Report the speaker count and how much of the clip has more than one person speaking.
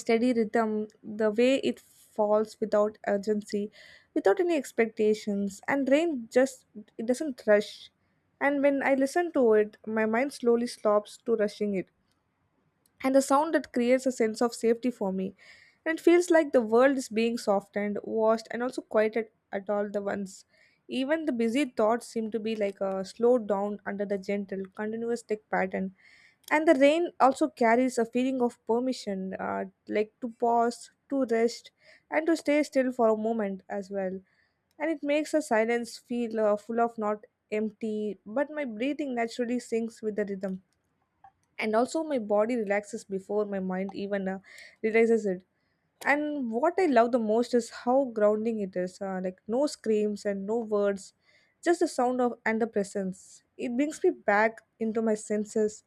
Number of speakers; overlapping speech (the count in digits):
1, no overlap